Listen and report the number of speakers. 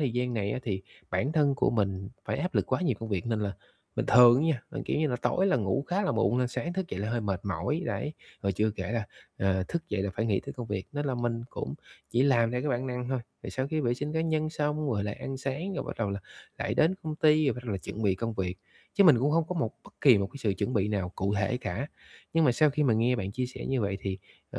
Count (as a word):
one